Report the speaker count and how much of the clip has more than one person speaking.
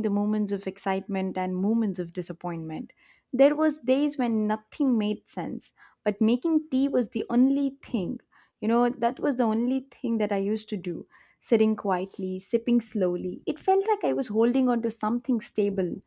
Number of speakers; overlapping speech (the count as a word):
one, no overlap